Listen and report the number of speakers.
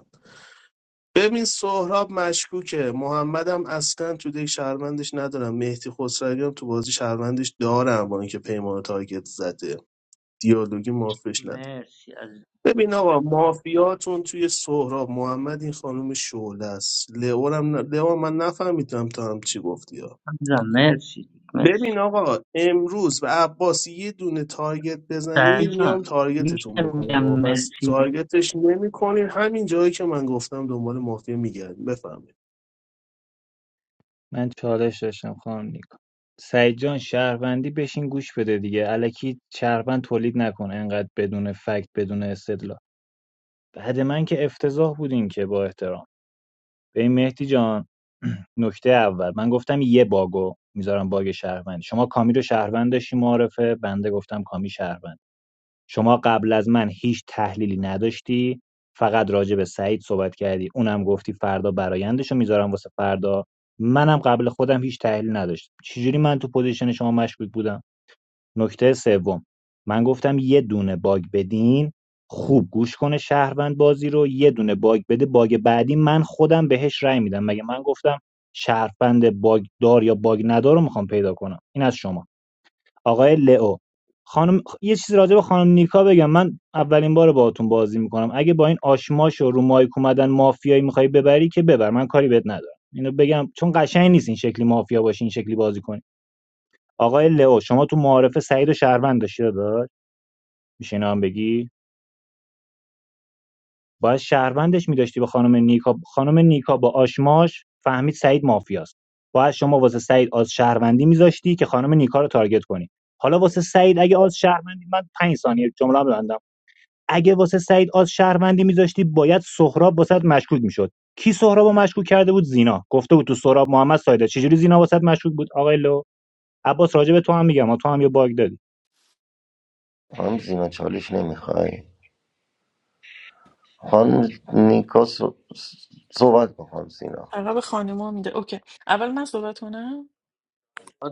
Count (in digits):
5